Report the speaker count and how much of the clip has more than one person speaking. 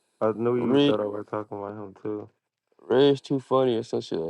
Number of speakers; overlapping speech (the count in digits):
2, about 9%